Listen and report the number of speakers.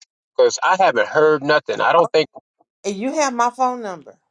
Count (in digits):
2